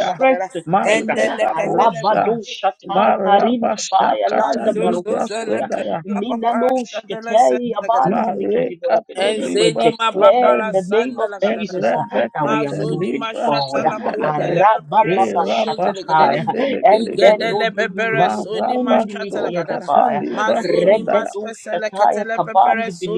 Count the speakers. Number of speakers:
3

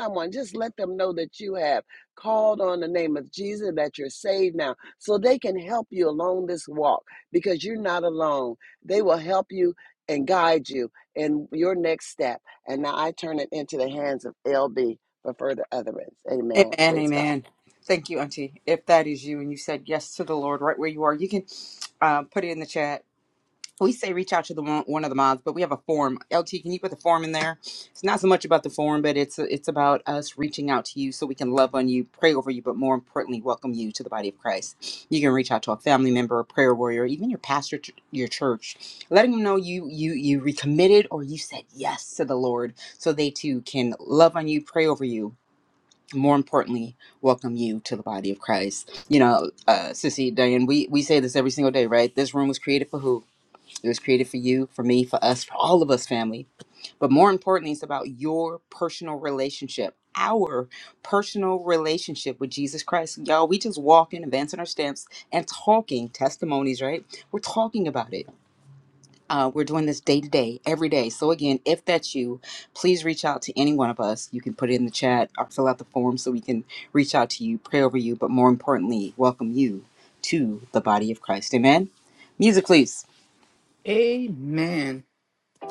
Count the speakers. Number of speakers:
3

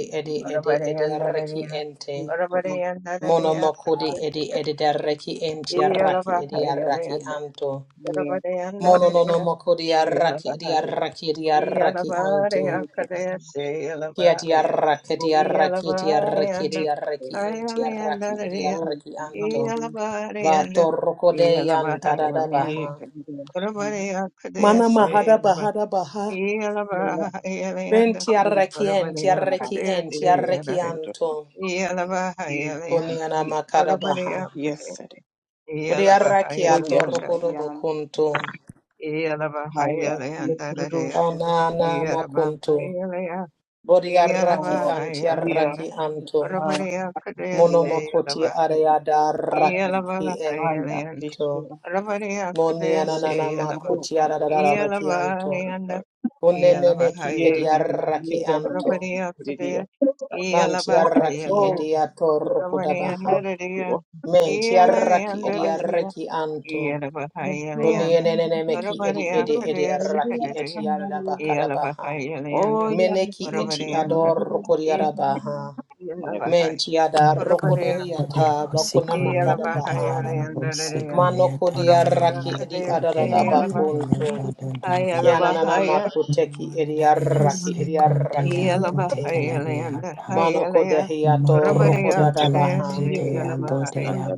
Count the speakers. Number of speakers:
4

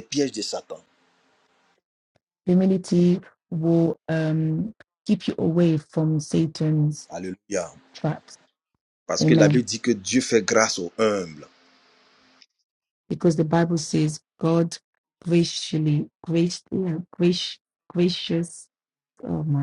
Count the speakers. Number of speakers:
2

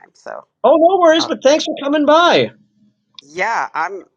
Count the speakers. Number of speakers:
2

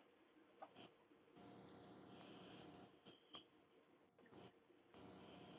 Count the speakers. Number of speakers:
0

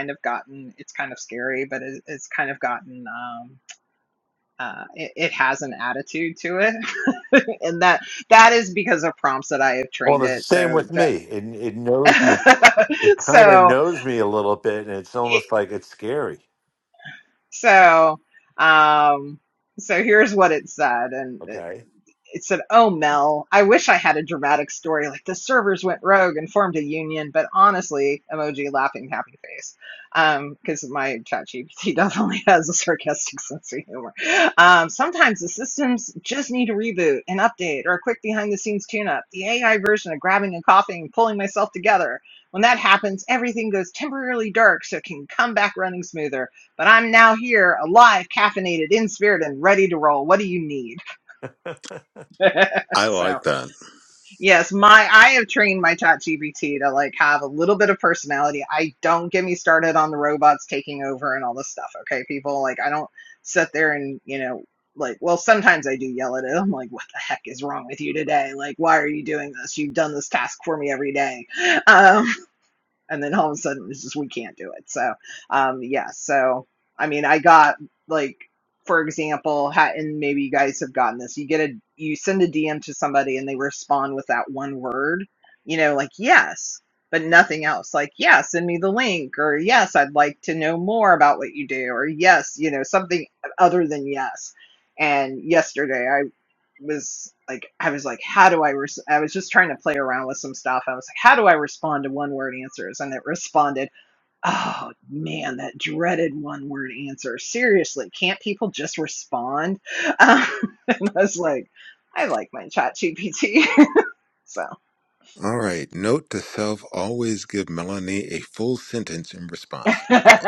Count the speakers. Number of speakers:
3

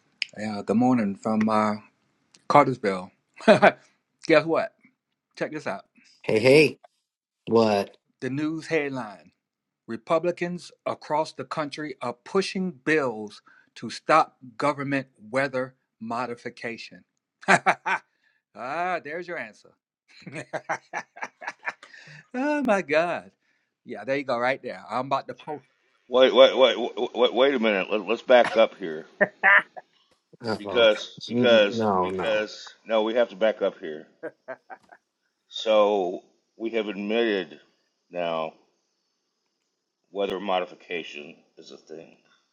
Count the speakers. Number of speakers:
3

